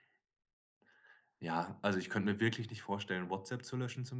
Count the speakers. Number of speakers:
1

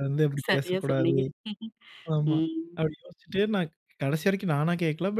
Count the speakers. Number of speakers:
2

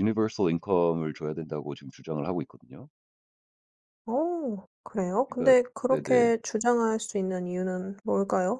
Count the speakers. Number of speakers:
2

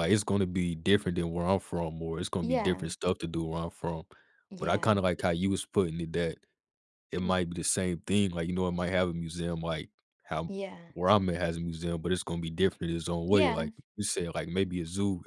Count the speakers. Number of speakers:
2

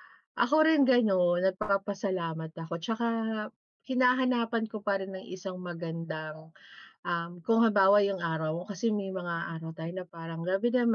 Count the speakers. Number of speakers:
1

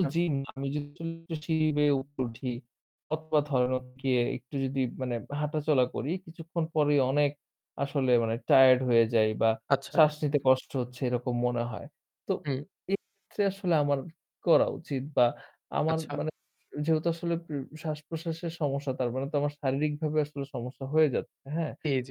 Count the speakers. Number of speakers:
2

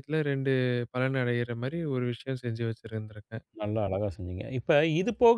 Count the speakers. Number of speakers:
2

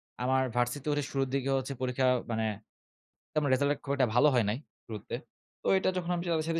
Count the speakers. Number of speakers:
1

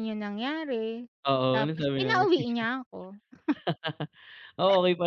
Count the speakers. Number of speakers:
2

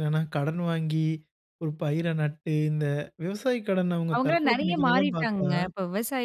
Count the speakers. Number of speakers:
2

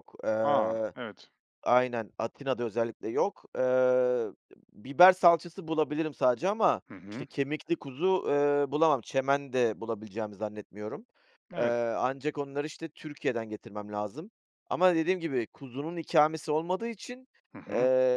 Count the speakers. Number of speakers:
2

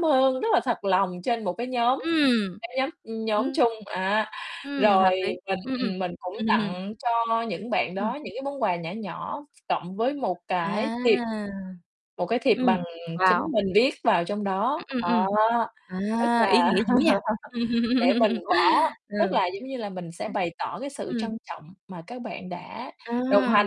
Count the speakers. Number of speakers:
2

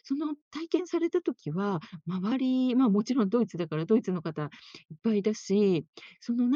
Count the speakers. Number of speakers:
1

